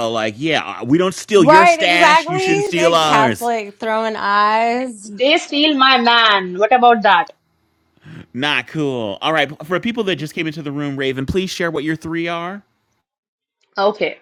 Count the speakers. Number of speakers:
3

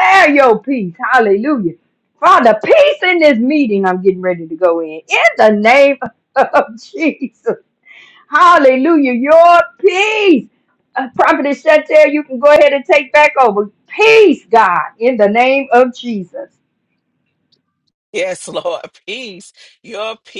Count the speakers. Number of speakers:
2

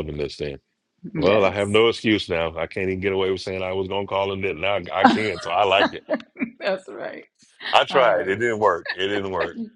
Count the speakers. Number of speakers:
2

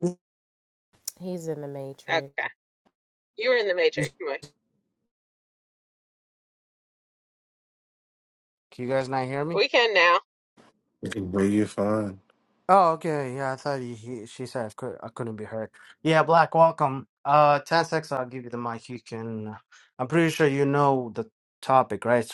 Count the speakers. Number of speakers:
4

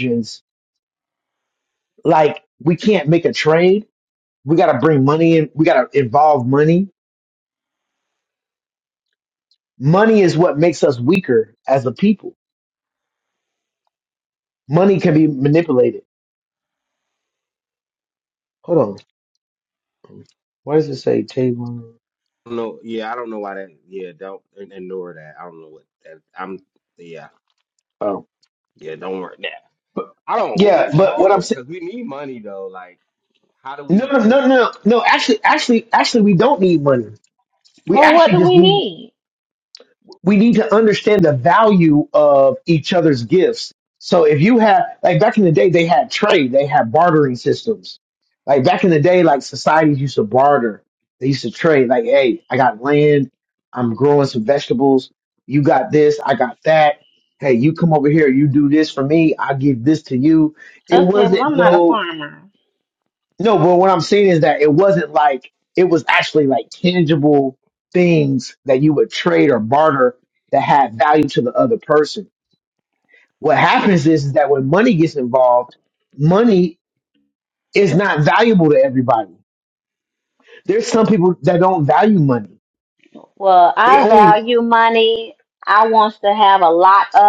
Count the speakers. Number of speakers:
3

